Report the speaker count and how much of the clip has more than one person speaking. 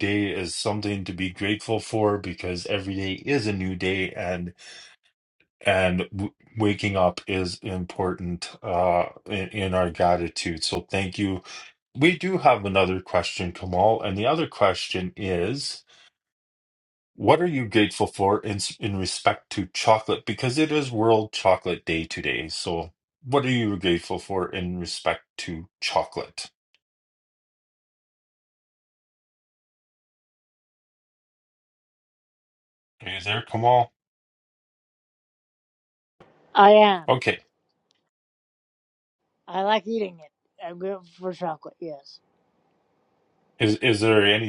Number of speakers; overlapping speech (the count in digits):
2, no overlap